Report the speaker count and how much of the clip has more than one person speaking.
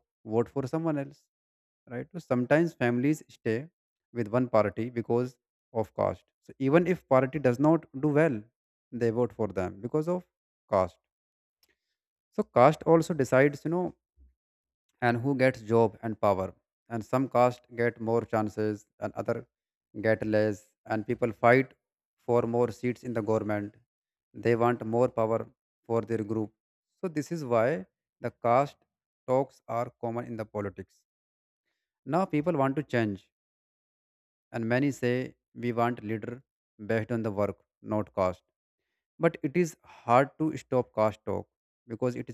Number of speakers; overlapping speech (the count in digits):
1, no overlap